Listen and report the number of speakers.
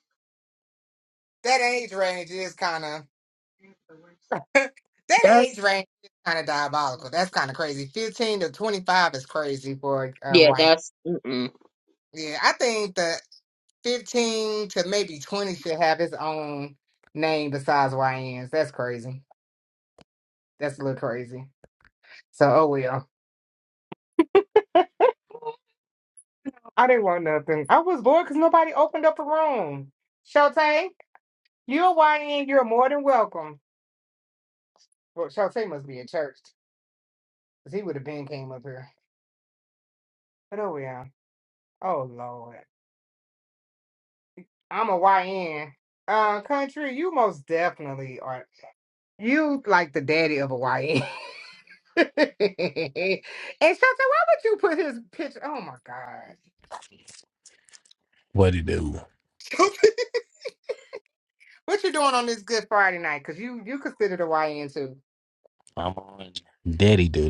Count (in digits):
3